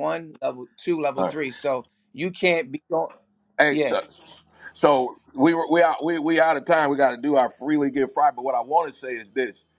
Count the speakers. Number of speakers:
2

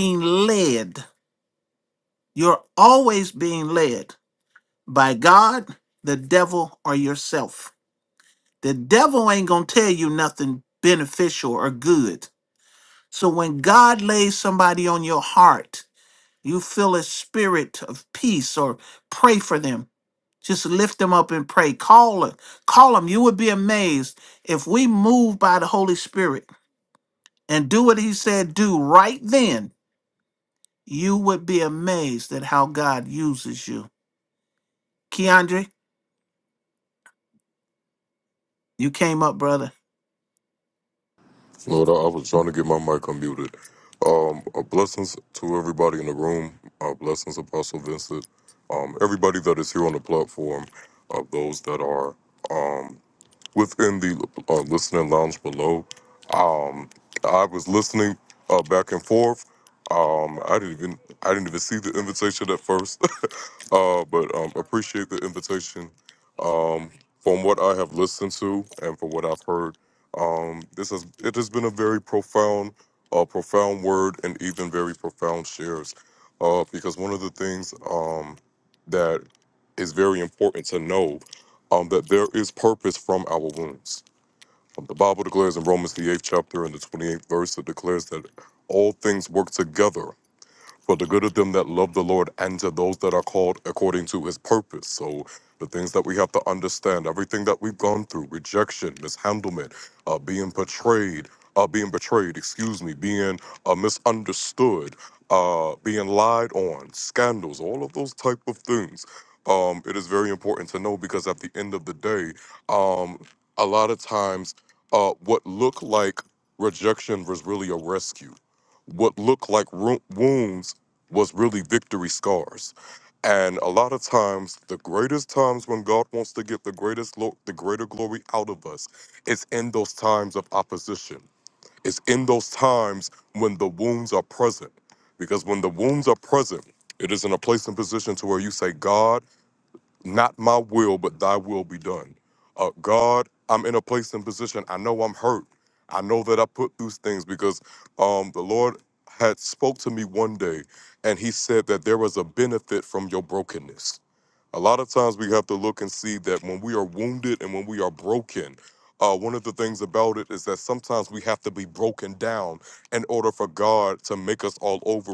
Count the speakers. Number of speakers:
2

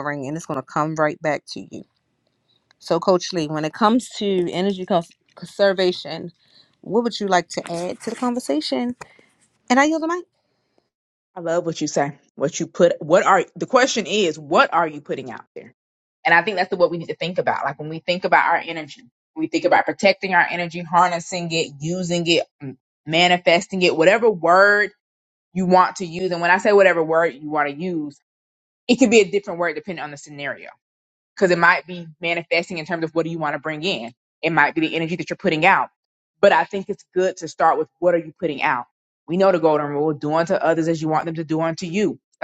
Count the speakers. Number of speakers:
2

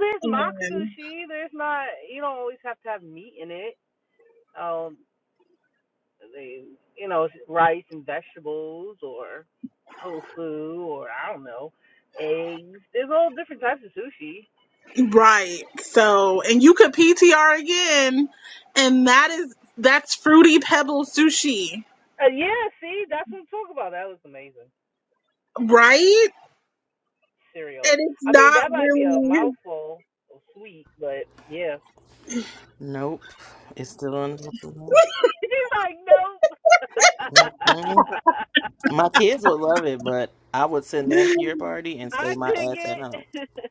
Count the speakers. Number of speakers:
3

